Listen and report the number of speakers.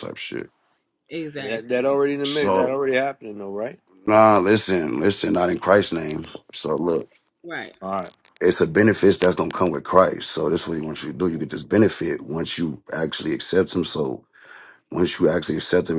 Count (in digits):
3